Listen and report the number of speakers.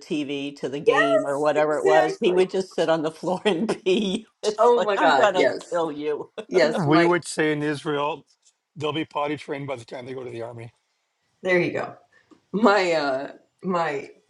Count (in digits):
3